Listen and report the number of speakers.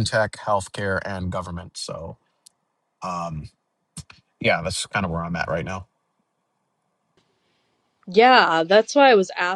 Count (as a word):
two